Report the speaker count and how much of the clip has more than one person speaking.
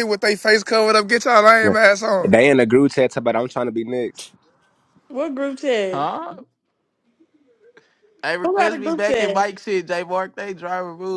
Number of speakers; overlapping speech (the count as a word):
four, about 11%